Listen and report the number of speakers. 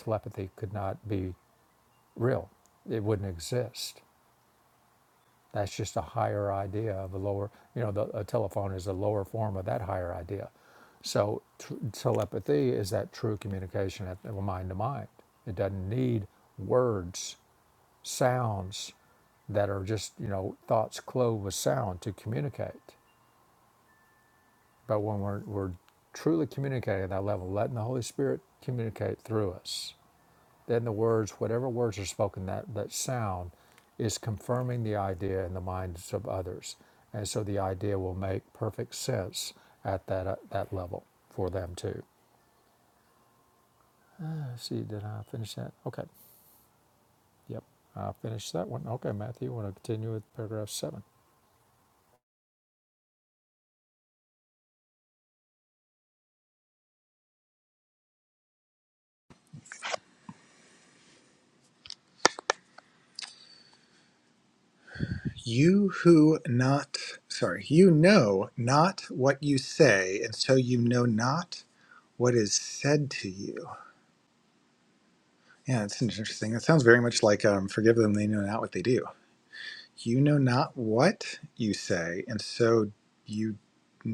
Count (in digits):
2